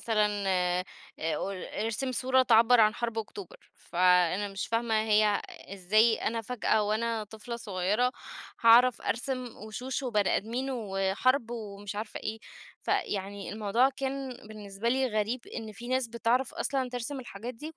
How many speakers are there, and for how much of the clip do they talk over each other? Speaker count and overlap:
1, no overlap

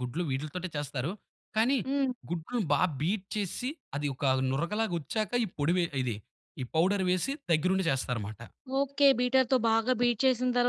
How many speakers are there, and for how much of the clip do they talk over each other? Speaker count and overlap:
2, no overlap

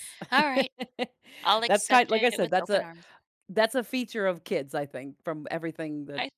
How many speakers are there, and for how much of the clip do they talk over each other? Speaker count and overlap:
2, about 19%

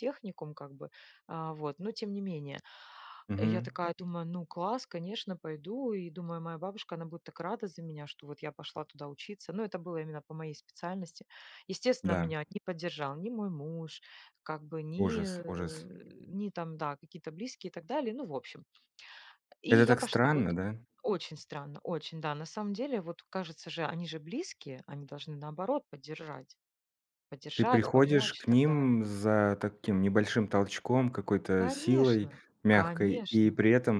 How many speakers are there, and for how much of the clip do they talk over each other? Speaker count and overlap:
2, about 15%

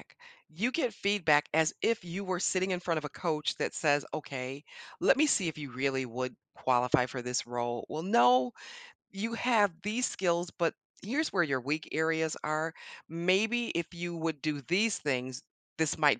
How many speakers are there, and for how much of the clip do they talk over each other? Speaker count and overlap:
1, no overlap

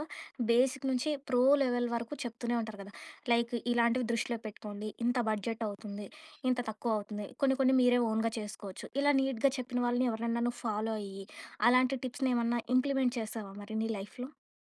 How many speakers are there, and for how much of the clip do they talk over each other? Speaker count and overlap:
1, no overlap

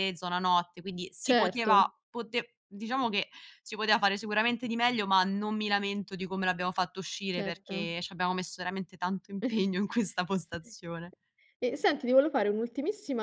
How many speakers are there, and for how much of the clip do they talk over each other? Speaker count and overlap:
2, about 8%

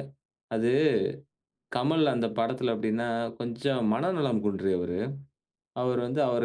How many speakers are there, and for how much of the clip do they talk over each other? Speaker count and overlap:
1, no overlap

